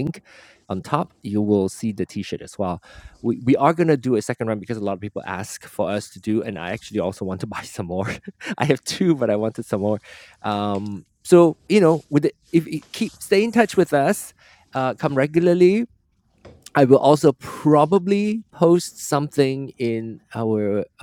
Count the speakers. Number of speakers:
1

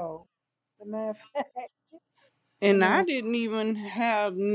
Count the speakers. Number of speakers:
2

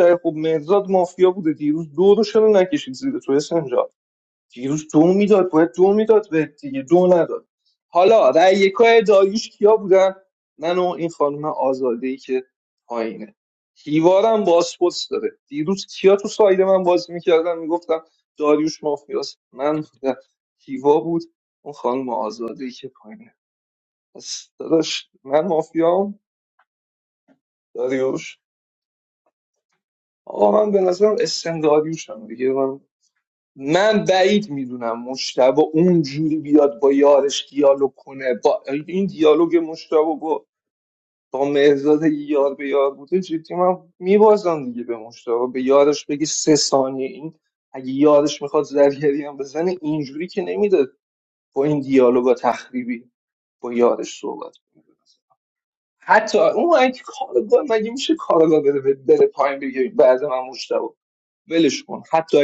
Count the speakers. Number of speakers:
1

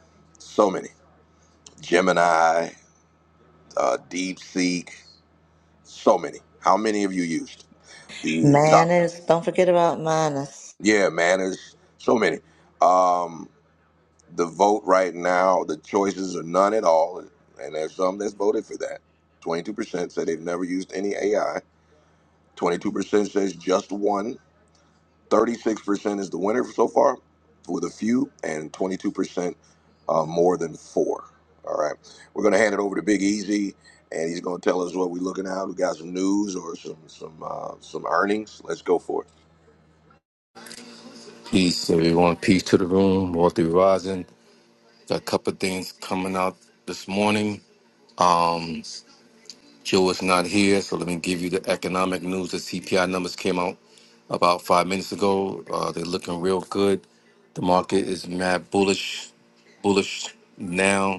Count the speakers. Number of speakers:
3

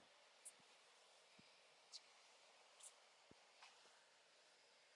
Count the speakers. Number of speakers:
0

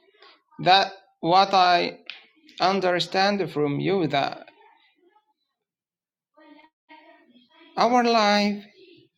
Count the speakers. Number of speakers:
1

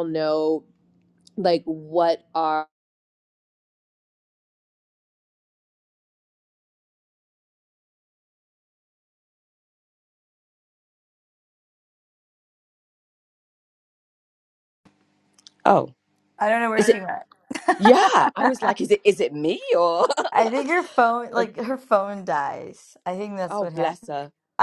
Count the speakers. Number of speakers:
3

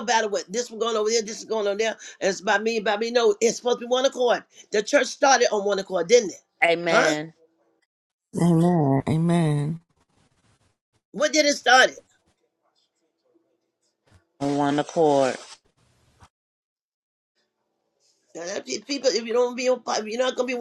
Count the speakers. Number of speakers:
3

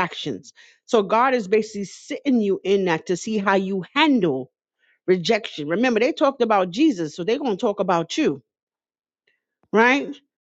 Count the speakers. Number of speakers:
1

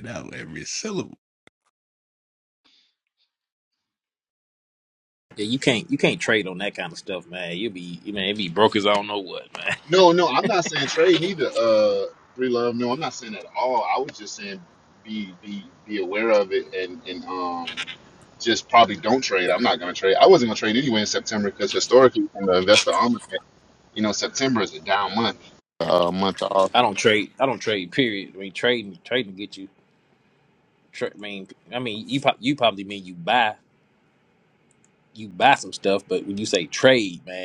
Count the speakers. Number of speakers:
3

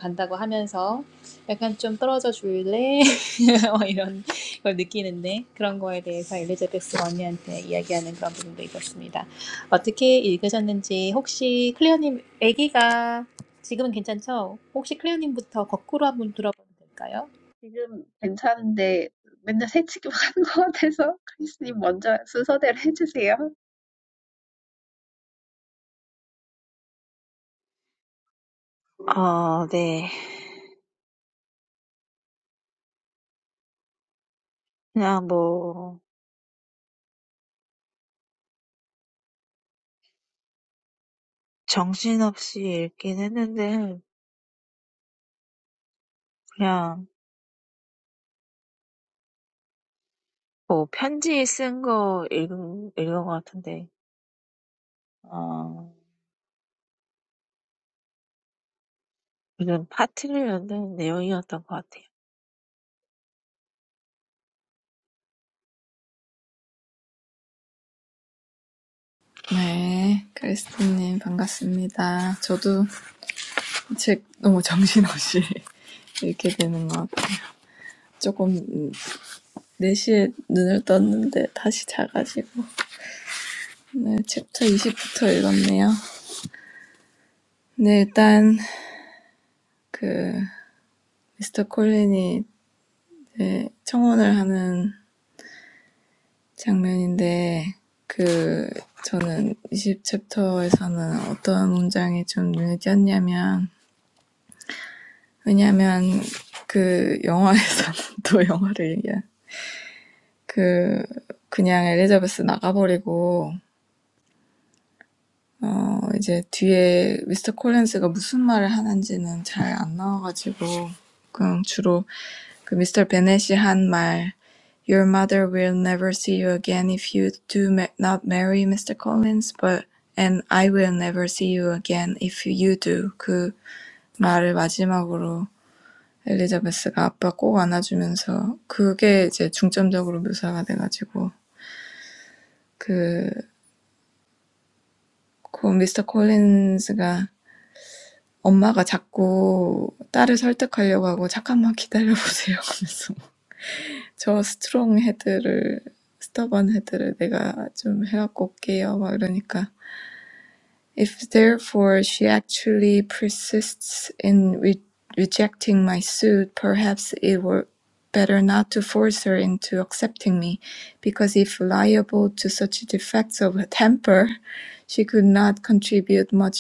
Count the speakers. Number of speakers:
4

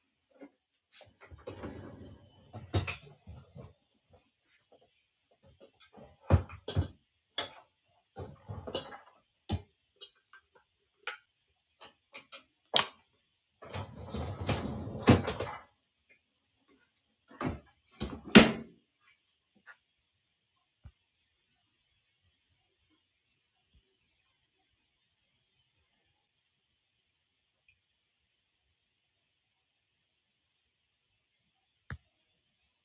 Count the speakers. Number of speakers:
0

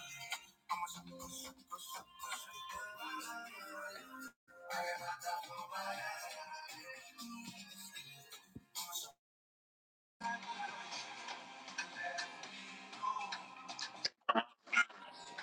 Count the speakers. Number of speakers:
0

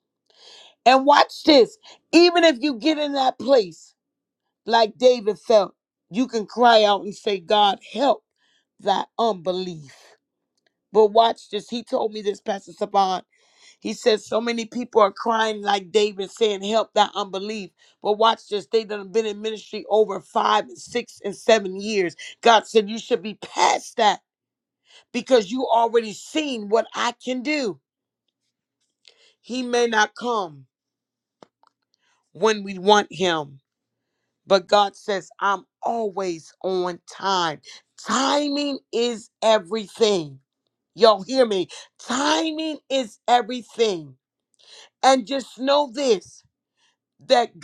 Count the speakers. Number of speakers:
1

